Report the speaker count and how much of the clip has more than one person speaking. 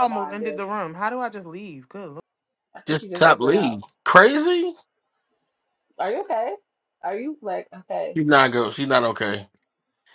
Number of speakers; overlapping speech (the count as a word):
three, about 16%